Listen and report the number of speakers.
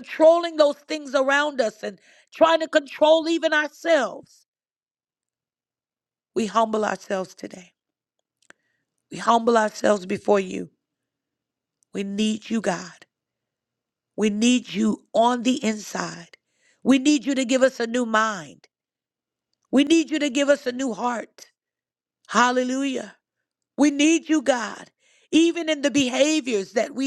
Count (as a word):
one